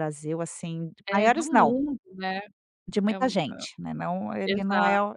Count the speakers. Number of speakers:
2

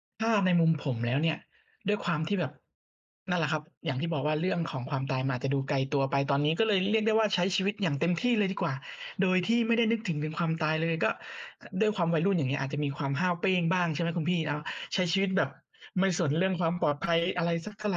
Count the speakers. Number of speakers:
1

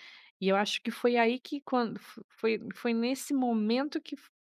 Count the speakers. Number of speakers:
1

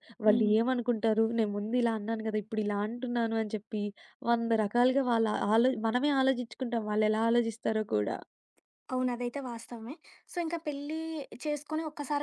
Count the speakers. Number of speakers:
2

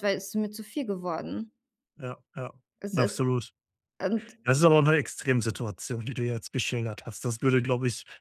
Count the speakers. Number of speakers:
2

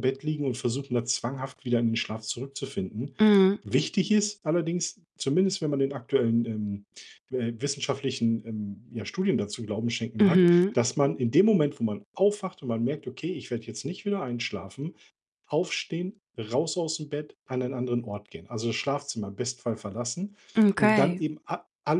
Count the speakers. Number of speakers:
2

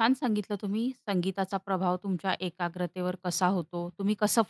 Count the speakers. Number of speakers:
1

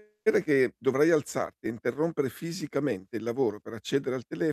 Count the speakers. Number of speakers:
1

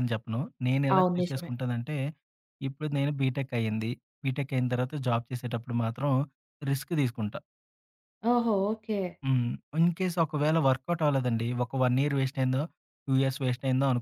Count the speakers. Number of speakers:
2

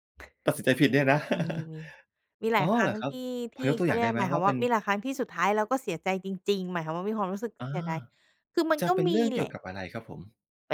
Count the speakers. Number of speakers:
2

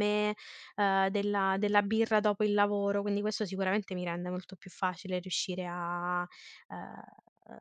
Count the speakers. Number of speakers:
1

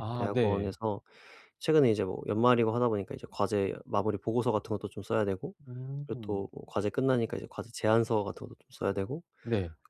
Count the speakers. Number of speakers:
2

